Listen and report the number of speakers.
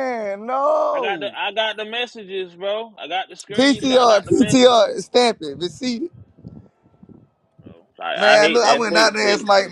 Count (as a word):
two